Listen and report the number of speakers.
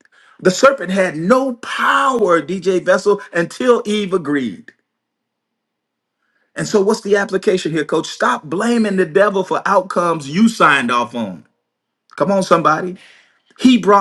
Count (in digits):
1